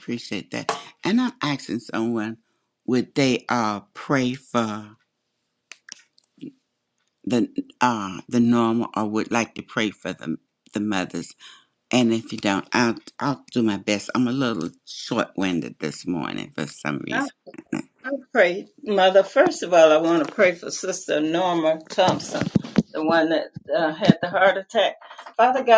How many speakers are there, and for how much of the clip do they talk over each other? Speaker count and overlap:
two, no overlap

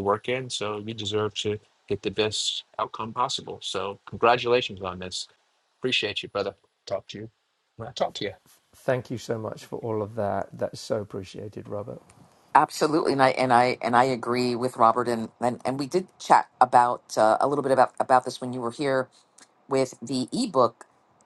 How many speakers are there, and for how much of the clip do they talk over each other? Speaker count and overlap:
three, no overlap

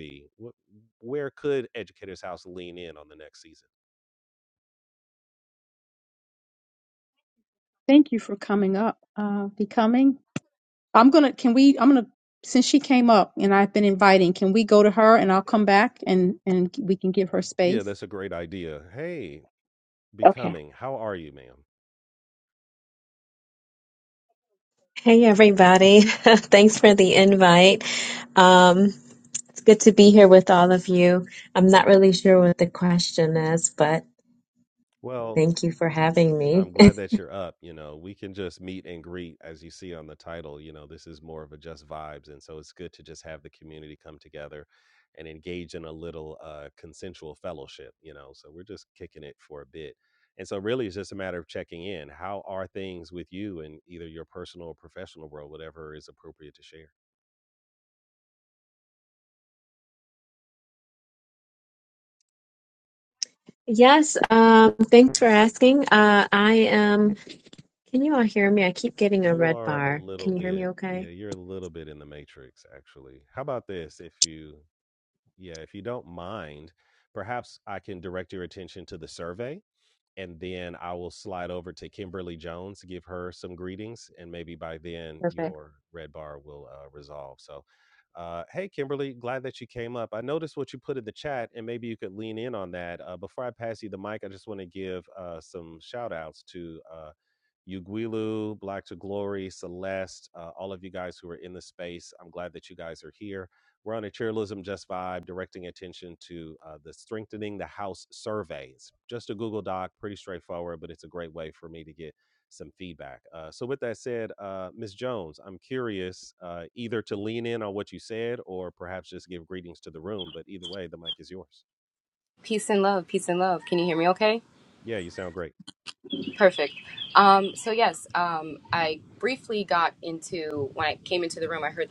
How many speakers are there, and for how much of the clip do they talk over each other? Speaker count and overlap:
four, about 2%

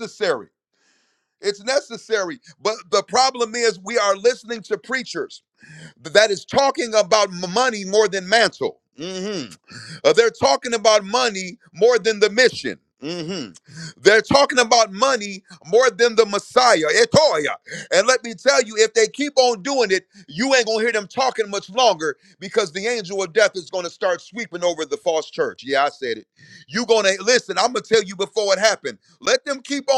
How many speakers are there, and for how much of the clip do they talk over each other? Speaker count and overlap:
one, no overlap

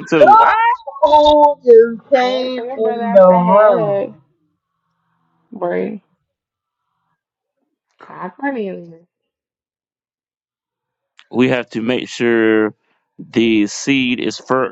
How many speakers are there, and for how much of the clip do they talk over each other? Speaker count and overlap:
three, about 15%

